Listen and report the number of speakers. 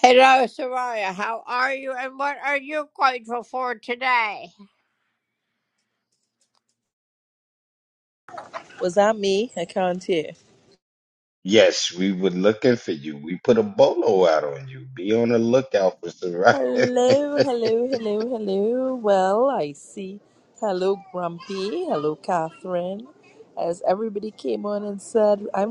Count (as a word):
three